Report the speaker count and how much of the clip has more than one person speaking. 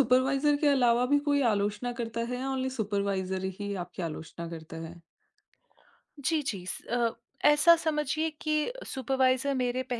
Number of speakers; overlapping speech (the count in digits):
2, no overlap